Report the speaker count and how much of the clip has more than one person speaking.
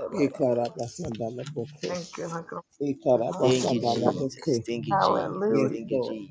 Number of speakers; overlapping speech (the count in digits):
3, about 41%